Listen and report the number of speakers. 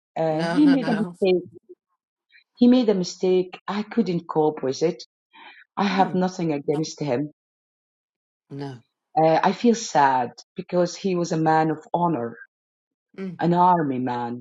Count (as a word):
two